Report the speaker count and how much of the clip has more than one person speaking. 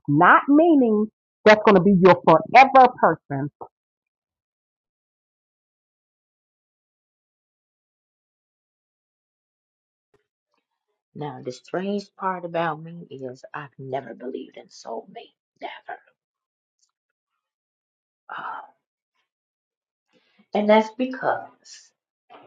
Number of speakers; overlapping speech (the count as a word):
two, no overlap